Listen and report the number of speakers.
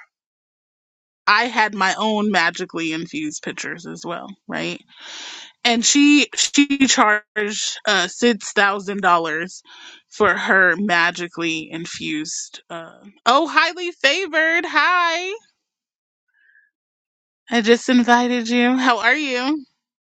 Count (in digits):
1